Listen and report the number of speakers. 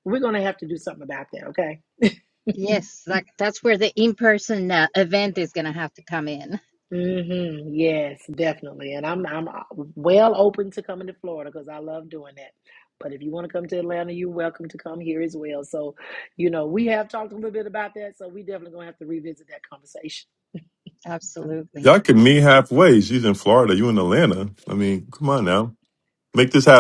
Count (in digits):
3